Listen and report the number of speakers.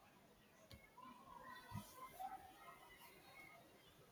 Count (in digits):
0